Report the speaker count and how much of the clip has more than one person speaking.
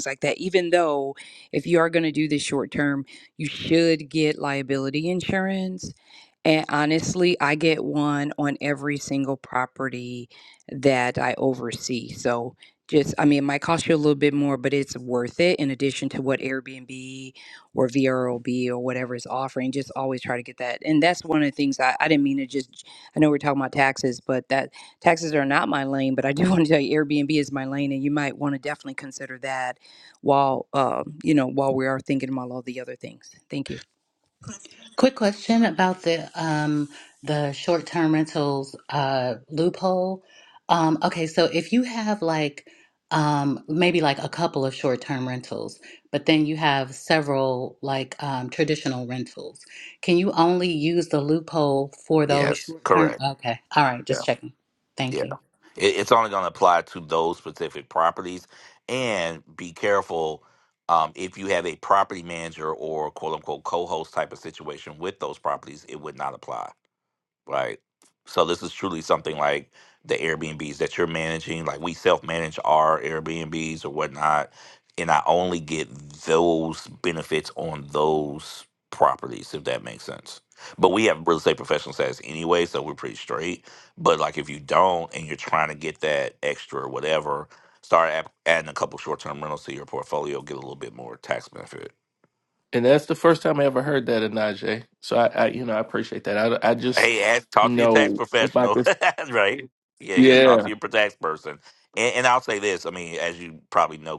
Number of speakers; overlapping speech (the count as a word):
four, about 3%